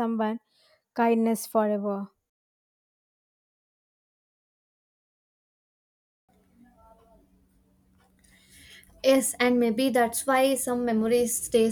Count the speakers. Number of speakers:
two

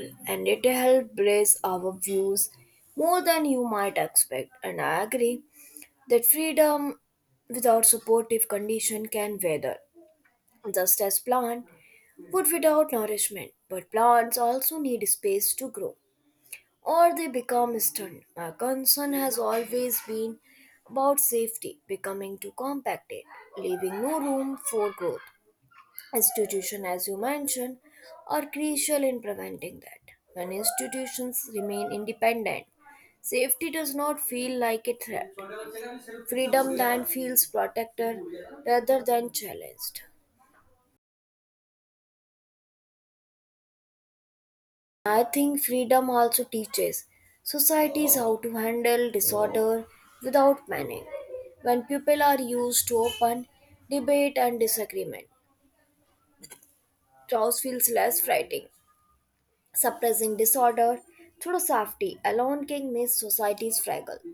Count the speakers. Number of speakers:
one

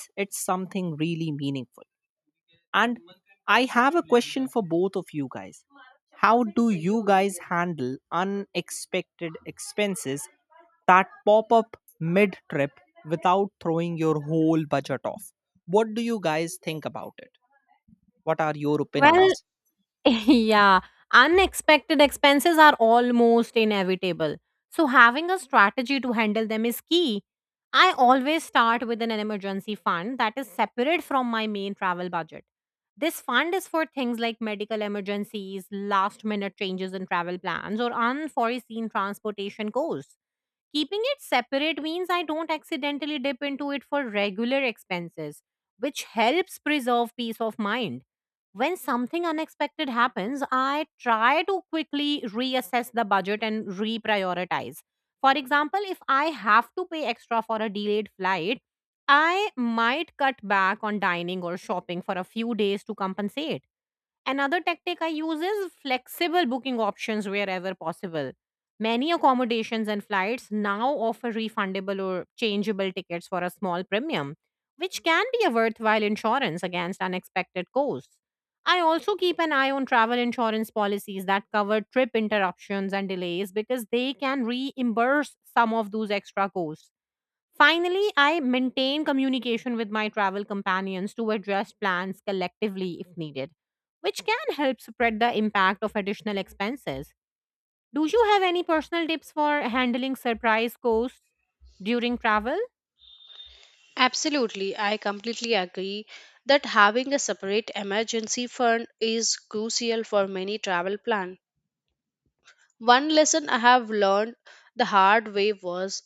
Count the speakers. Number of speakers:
three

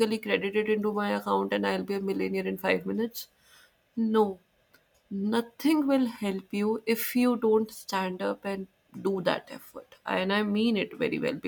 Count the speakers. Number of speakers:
one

